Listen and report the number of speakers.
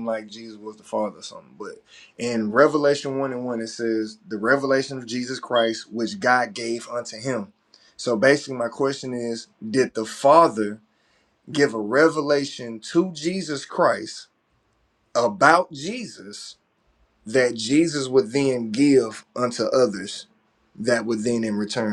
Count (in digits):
1